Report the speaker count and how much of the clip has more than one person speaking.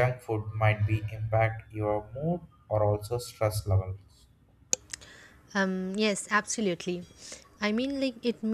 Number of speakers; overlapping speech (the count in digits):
2, no overlap